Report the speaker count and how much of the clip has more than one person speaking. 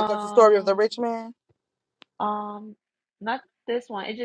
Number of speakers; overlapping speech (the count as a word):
two, about 19%